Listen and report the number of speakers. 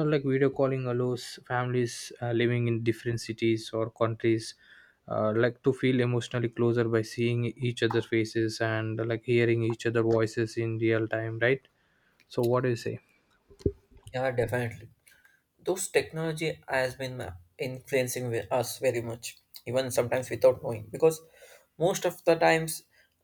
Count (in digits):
2